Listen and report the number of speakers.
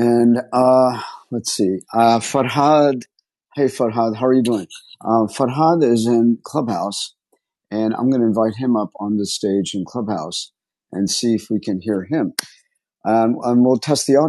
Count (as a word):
one